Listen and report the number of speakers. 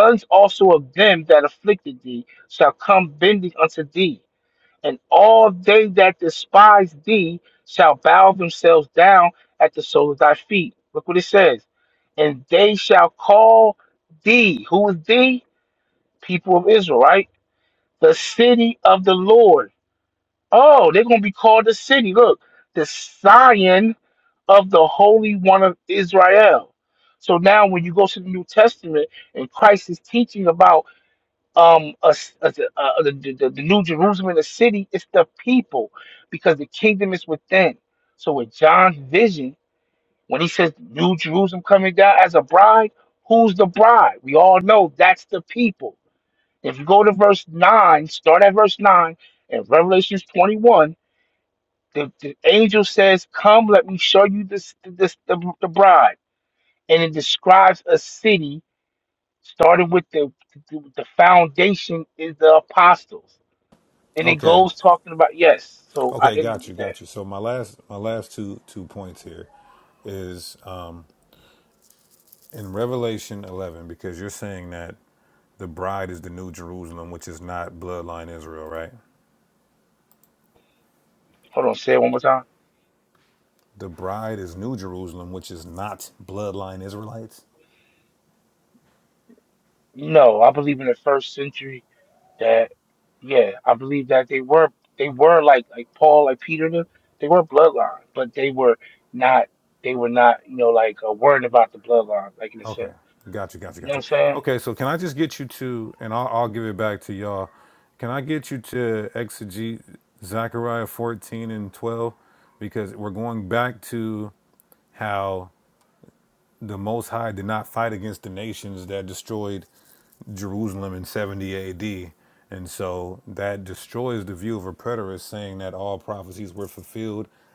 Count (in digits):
2